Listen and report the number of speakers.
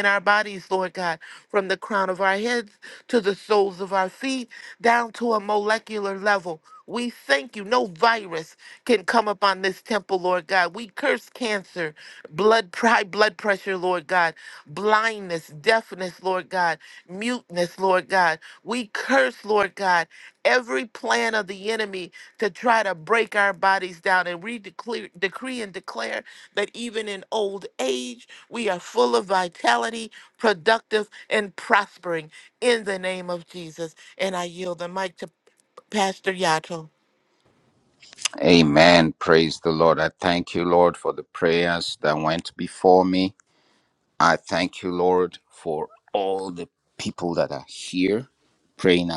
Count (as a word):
two